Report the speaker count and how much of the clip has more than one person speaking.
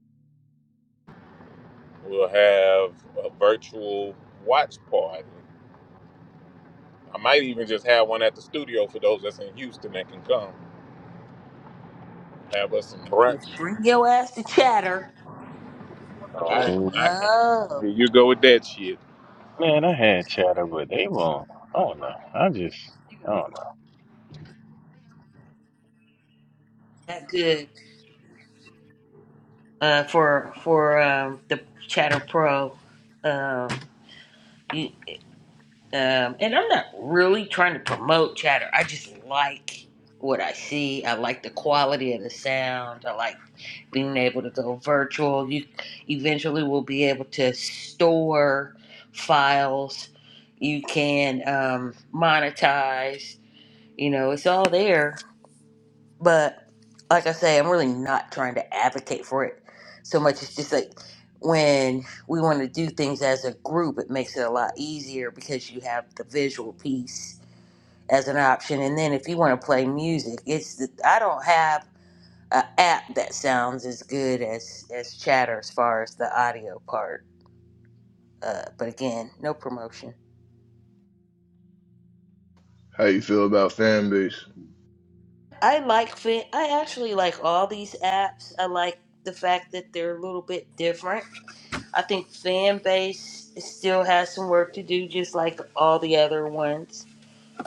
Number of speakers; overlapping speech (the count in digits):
4, about 1%